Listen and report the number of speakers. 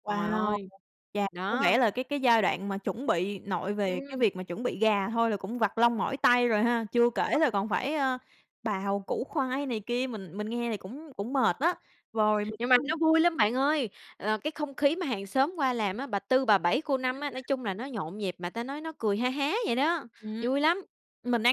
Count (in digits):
2